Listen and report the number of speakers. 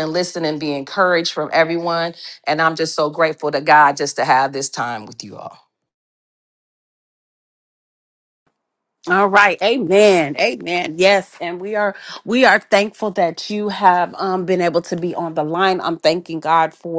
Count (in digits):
2